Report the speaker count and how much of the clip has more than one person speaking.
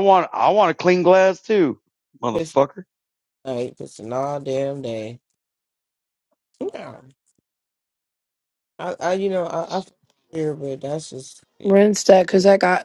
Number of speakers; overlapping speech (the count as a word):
three, about 3%